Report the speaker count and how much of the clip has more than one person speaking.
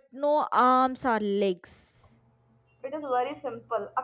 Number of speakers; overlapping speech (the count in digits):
2, no overlap